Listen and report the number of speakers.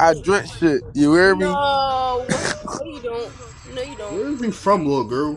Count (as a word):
three